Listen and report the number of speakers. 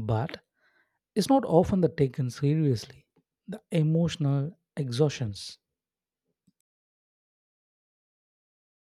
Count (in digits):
1